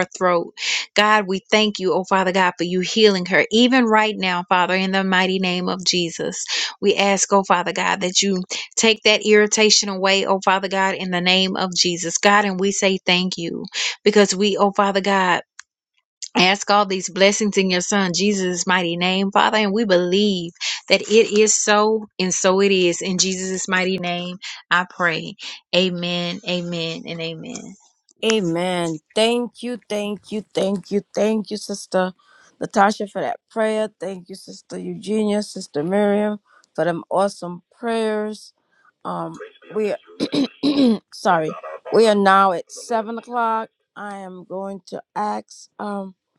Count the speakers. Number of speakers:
2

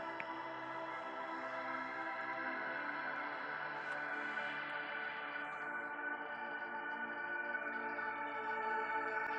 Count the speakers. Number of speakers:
0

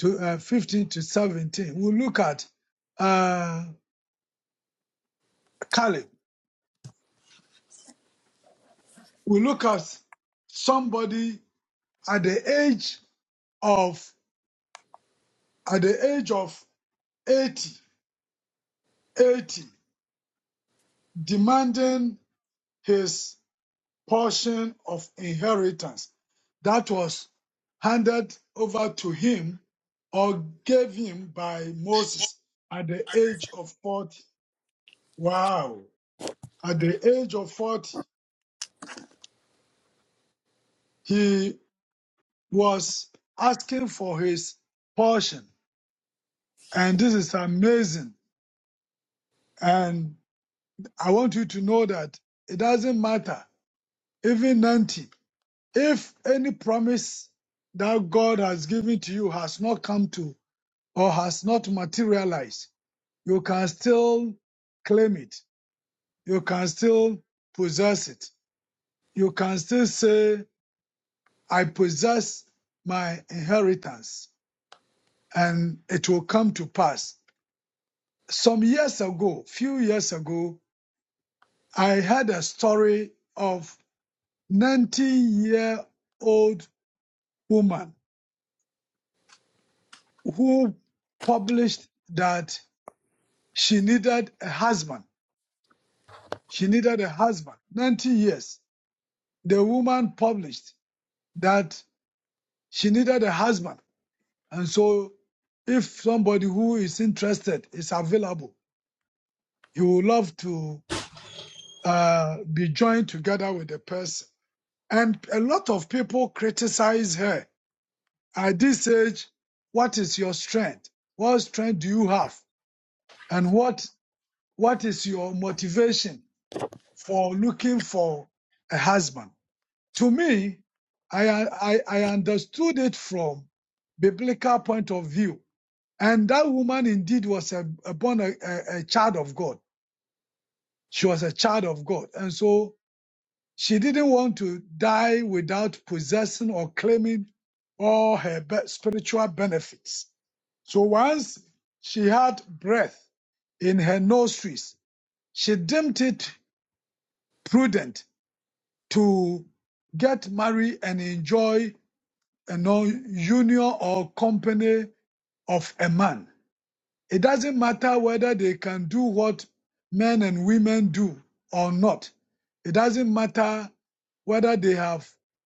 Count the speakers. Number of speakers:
1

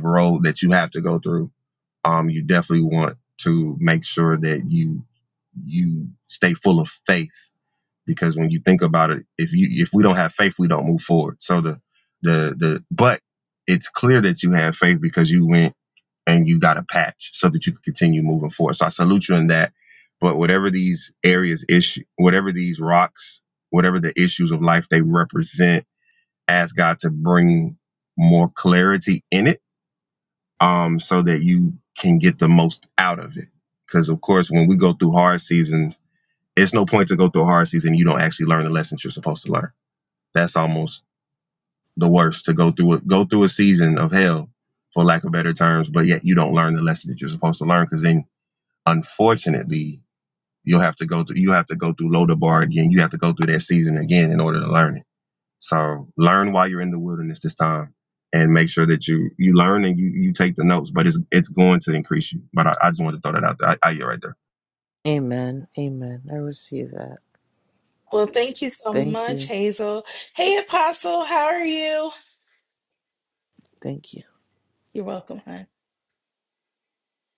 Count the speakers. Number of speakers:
3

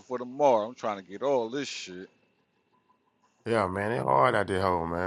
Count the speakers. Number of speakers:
2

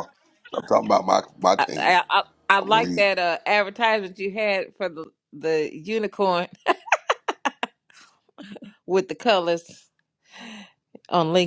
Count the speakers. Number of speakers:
2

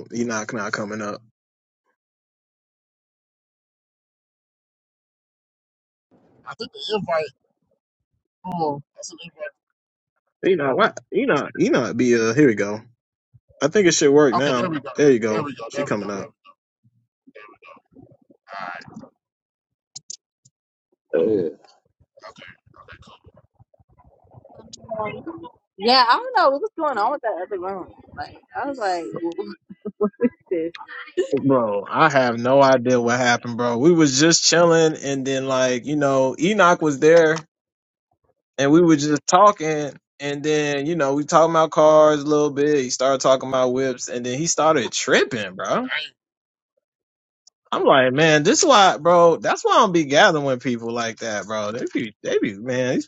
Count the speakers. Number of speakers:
3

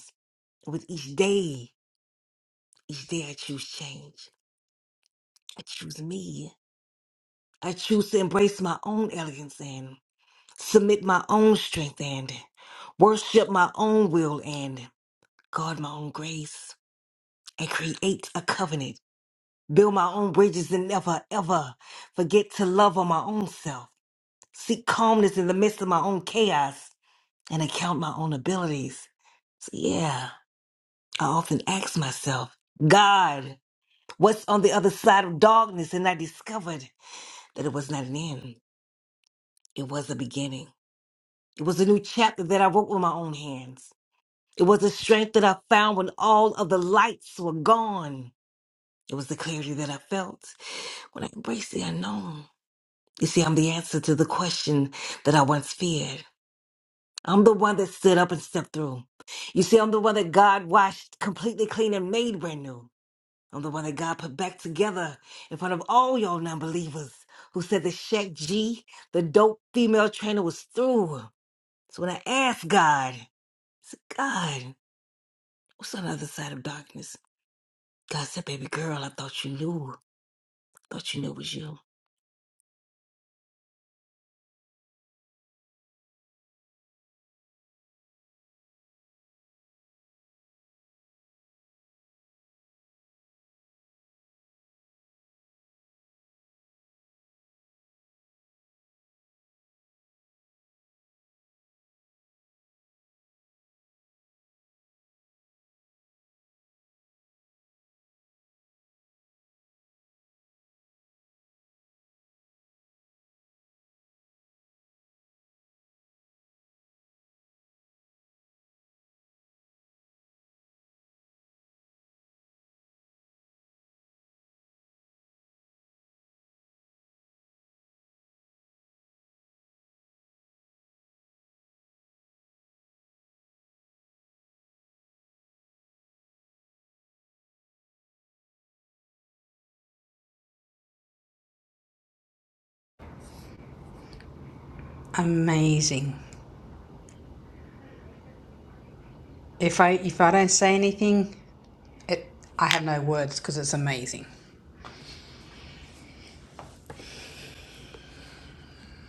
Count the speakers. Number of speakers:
2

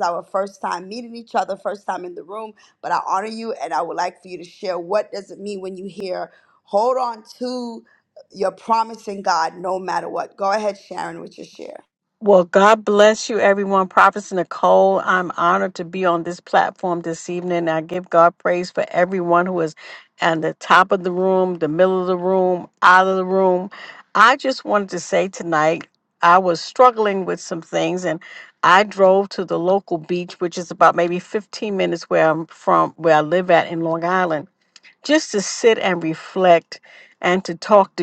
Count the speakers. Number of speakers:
2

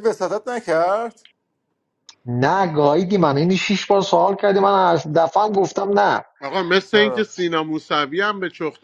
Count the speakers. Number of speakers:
3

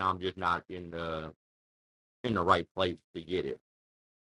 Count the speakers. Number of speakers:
1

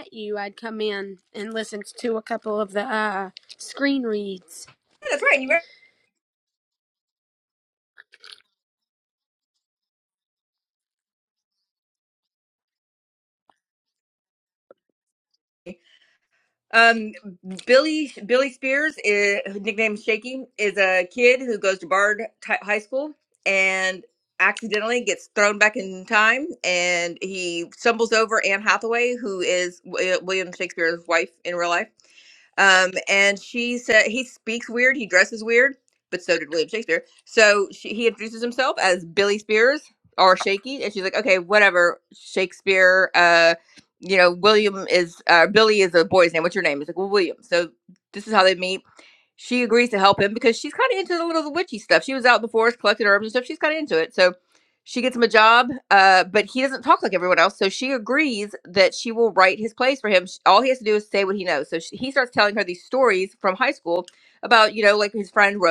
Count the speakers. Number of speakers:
2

